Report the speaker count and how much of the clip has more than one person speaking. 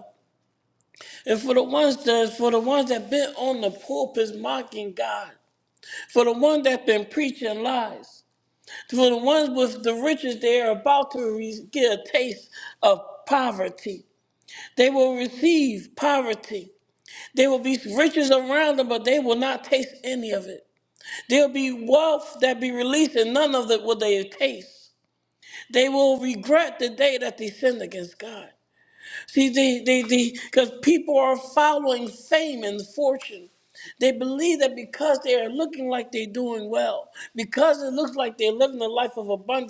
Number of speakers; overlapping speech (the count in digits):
1, no overlap